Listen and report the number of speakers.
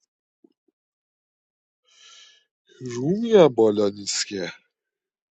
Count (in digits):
1